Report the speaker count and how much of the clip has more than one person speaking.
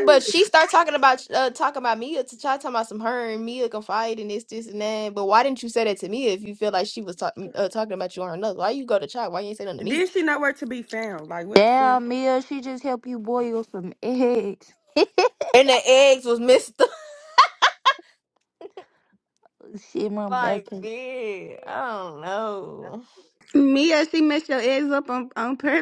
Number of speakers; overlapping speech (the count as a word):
four, about 6%